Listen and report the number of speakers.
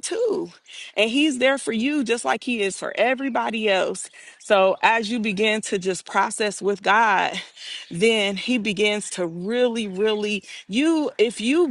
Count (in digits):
1